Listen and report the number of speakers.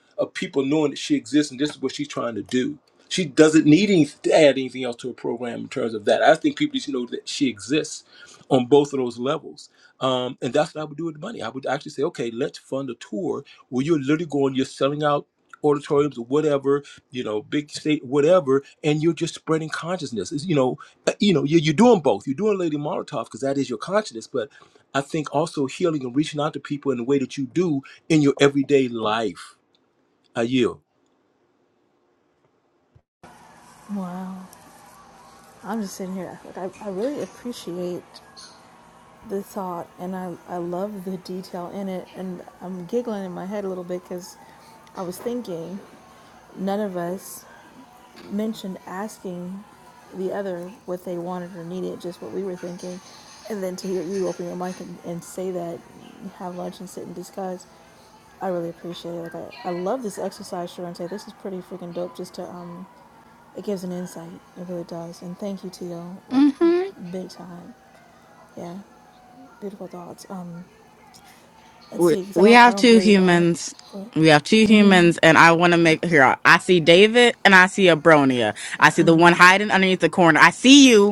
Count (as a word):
three